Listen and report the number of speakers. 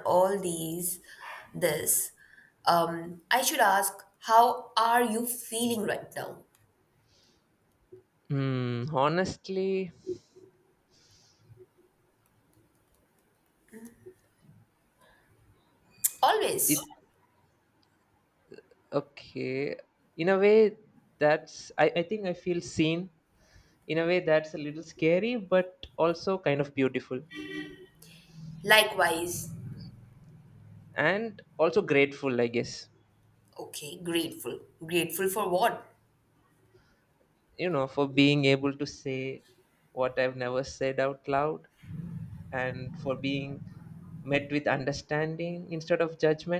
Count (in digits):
2